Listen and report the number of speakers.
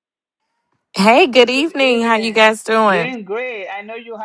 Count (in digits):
2